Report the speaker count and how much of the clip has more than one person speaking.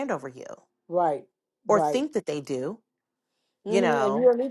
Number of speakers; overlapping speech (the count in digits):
2, about 19%